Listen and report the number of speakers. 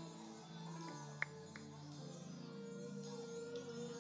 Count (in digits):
0